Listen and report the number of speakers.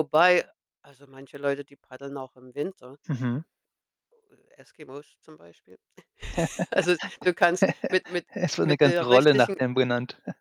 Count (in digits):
2